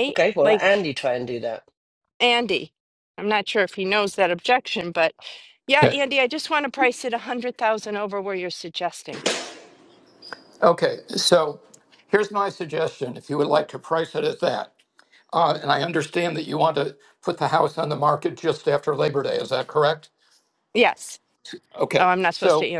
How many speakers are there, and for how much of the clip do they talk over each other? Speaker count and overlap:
3, about 6%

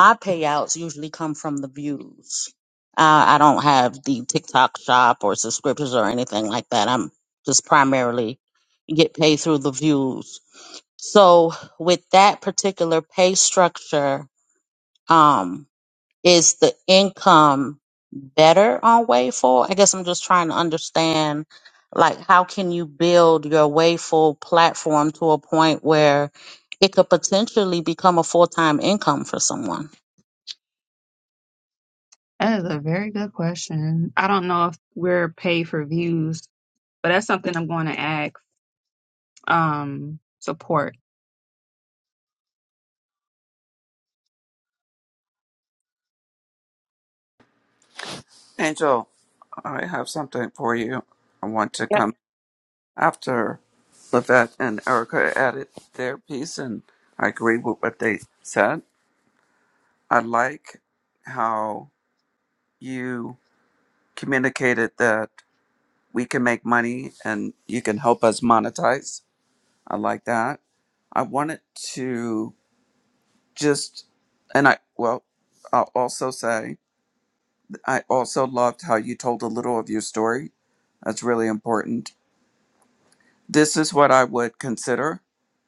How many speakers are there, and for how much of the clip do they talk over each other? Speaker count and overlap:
3, no overlap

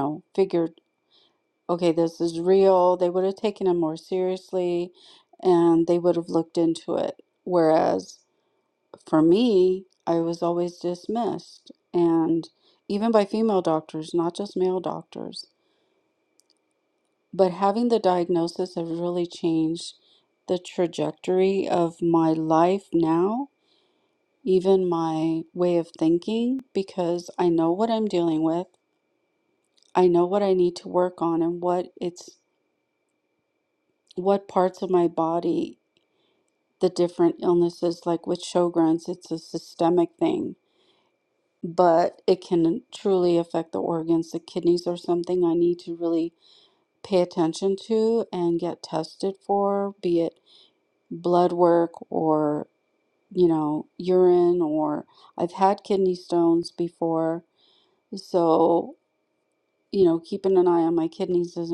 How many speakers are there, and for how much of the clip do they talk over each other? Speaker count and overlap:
1, no overlap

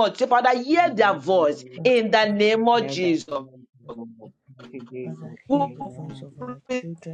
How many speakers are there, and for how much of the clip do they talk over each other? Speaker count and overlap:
3, about 43%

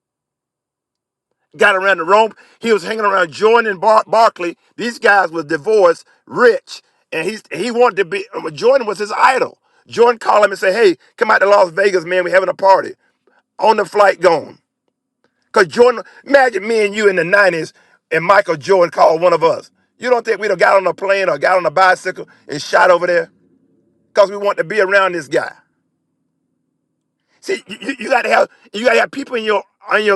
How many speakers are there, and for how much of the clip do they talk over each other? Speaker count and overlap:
1, no overlap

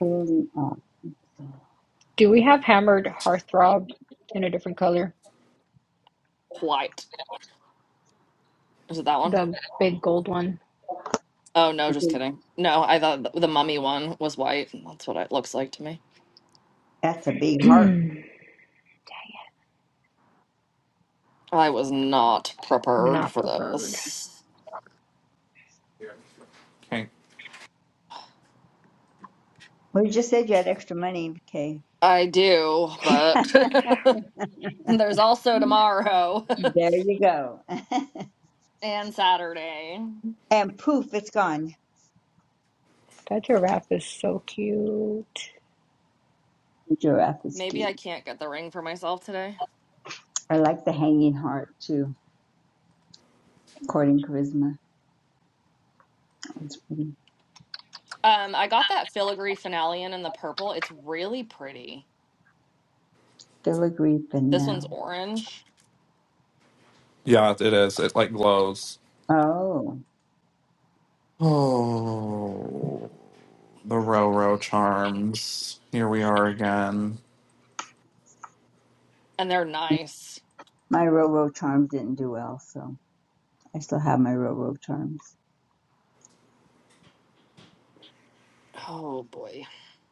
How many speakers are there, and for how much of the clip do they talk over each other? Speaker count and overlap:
4, about 3%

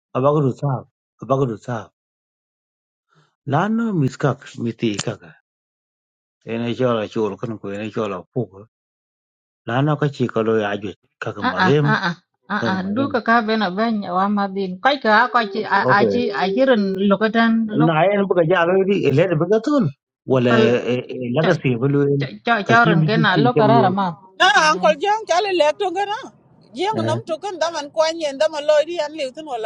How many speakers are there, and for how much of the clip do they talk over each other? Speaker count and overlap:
3, about 10%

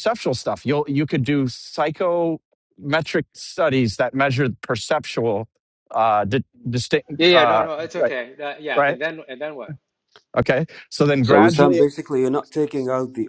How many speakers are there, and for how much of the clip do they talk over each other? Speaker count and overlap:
3, about 14%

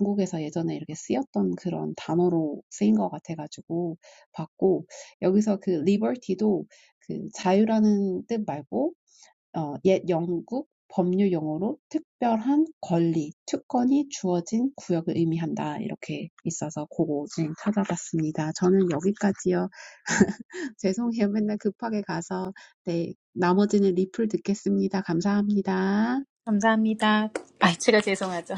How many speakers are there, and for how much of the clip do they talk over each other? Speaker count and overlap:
2, no overlap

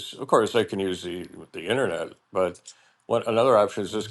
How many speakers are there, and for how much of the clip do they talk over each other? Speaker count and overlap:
1, no overlap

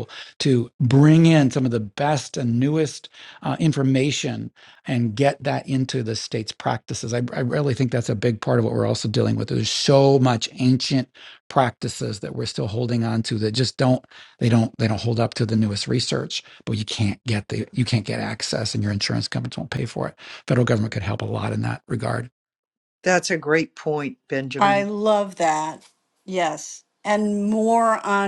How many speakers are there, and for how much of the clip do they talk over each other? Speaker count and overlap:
3, about 1%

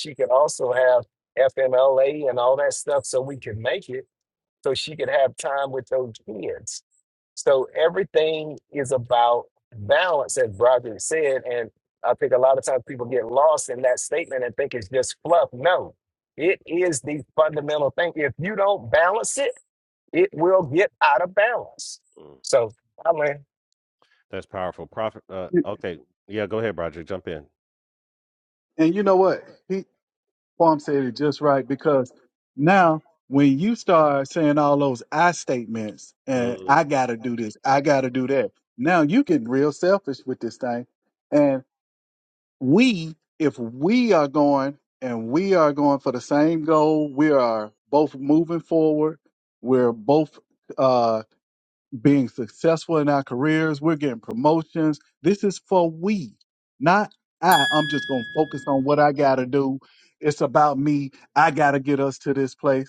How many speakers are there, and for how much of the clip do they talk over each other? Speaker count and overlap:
3, about 1%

